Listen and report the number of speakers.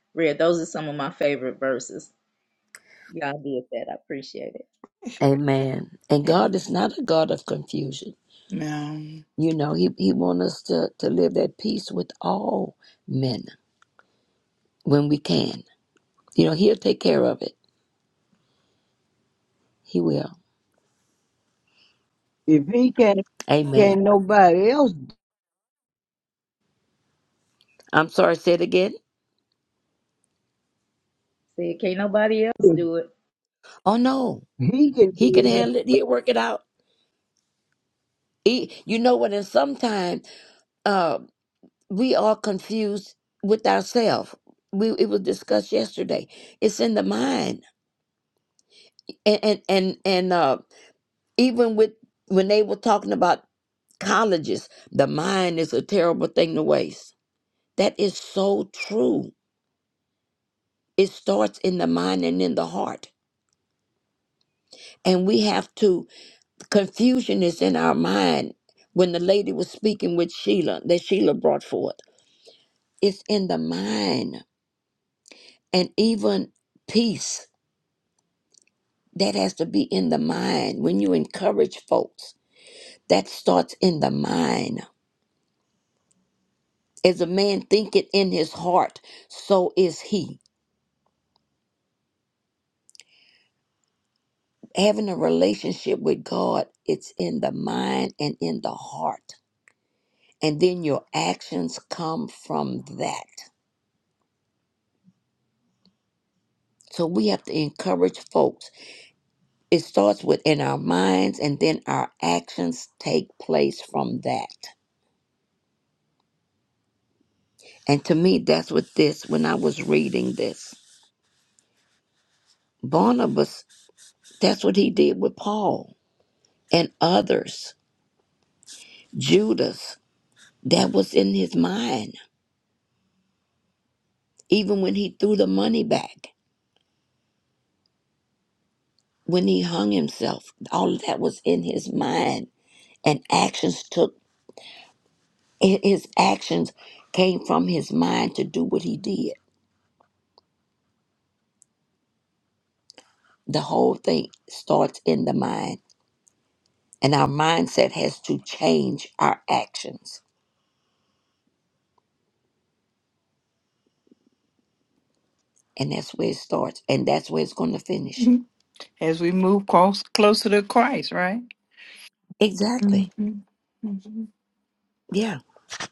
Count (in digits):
4